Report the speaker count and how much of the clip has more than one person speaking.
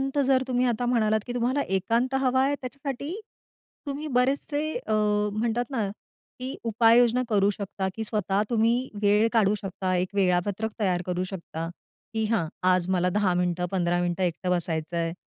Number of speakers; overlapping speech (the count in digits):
1, no overlap